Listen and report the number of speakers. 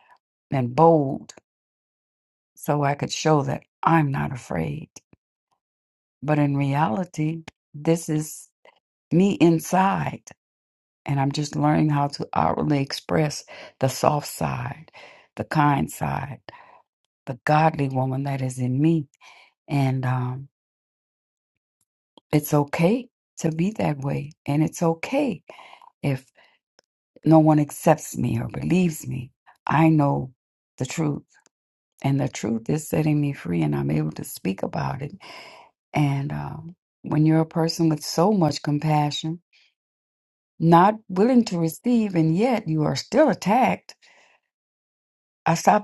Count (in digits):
1